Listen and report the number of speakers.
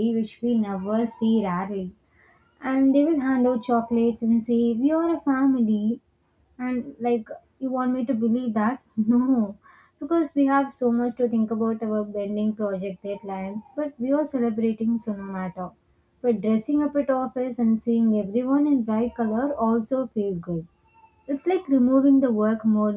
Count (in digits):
1